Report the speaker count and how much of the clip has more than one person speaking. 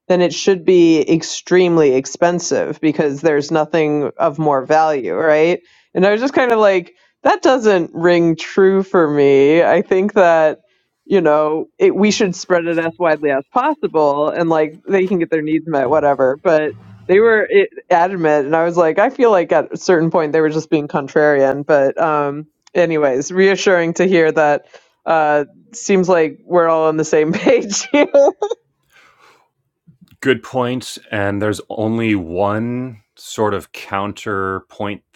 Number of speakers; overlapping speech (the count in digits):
2, no overlap